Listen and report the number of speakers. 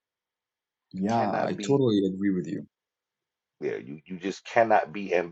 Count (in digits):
2